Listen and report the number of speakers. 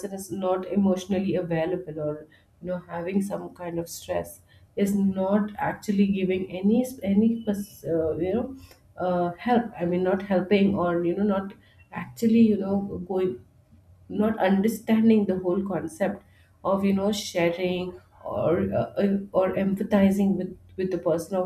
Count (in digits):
1